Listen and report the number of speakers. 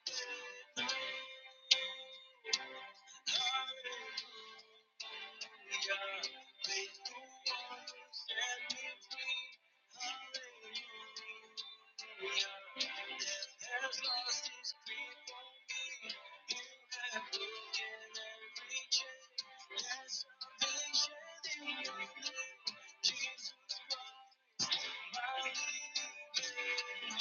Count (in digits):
0